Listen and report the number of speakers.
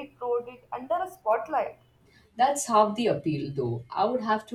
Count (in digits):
2